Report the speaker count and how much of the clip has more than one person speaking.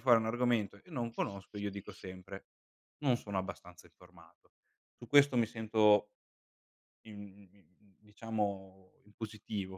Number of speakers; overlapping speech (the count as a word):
one, no overlap